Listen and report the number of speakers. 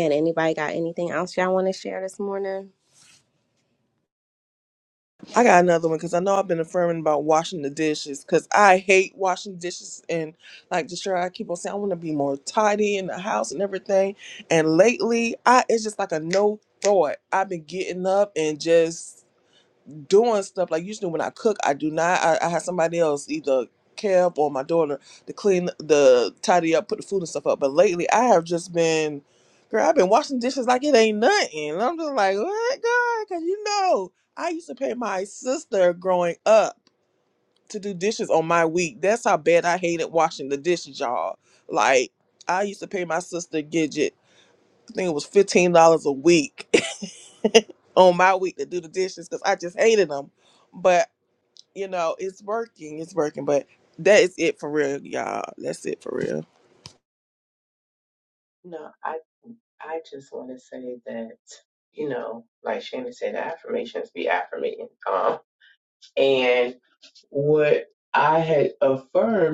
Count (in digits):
3